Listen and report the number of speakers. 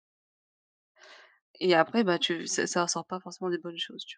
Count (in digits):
1